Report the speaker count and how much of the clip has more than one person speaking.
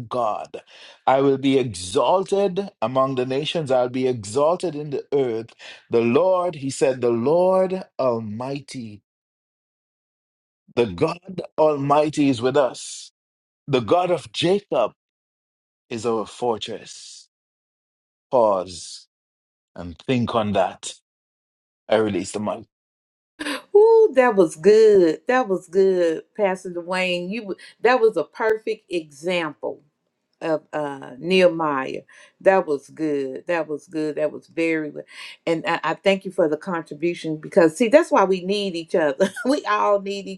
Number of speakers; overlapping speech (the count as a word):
two, no overlap